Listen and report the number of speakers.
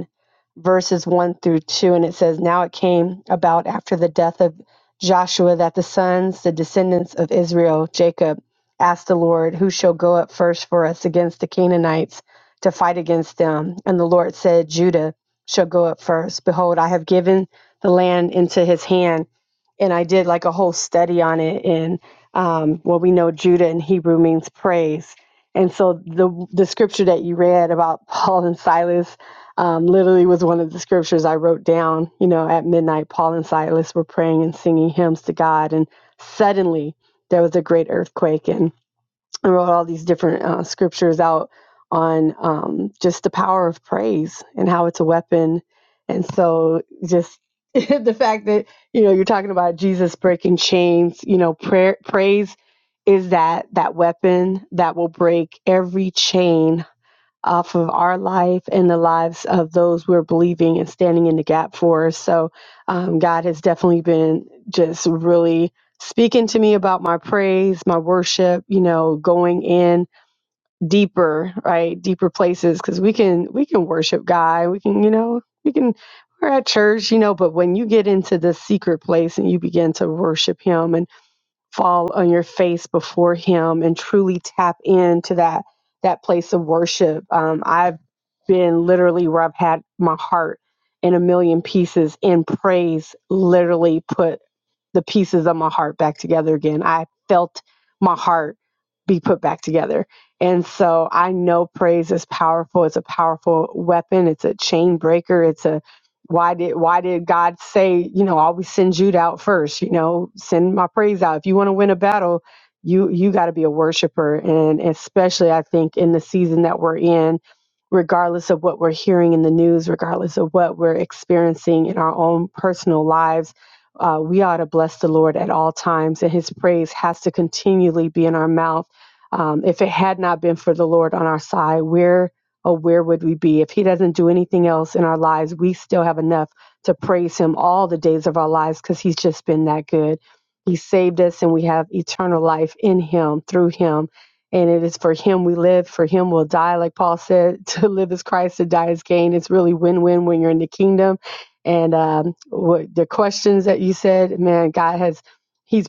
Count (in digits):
1